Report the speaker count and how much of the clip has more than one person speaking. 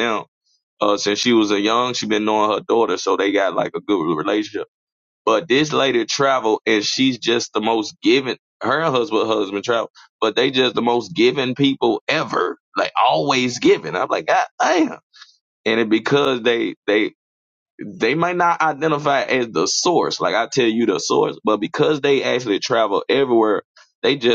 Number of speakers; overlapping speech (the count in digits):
1, no overlap